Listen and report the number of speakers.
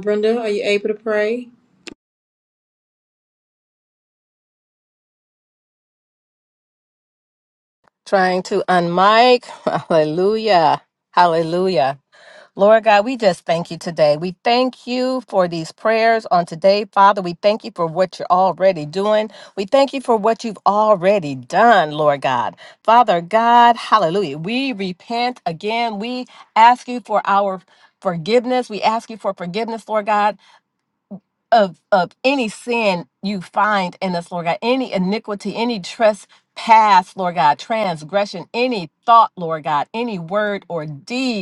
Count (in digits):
2